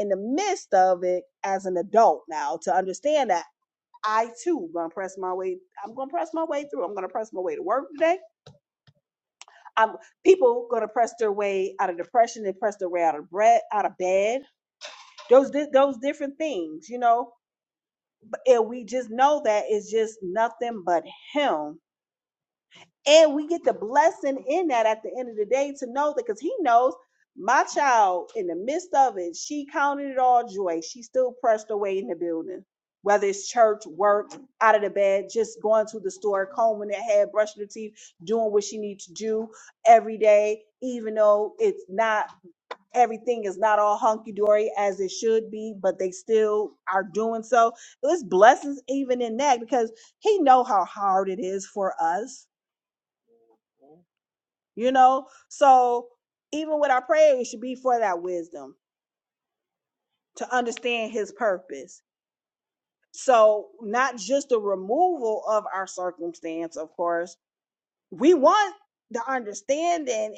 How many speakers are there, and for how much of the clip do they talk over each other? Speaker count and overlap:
one, no overlap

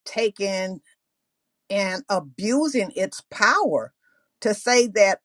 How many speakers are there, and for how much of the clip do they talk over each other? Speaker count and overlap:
one, no overlap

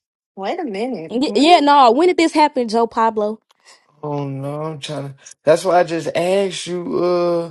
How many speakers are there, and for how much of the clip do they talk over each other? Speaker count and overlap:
three, about 6%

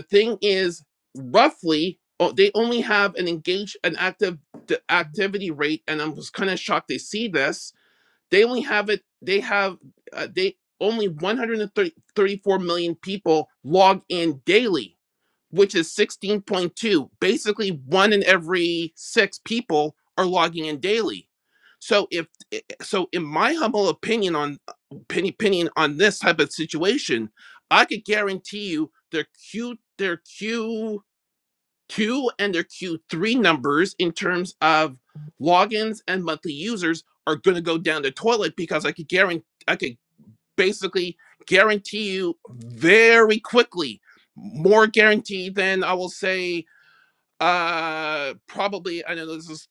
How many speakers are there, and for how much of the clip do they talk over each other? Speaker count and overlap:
one, no overlap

